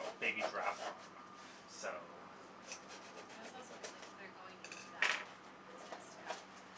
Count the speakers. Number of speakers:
2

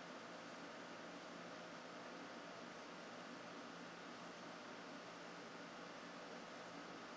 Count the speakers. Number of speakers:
0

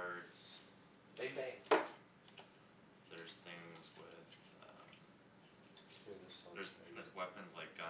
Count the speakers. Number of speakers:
2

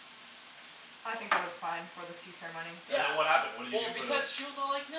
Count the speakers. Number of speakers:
3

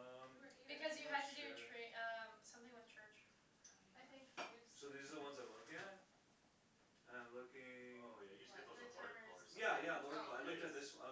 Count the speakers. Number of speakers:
4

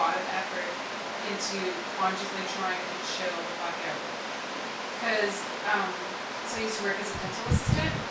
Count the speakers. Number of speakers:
1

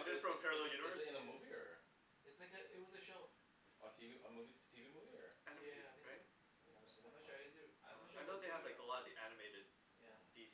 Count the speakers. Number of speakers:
3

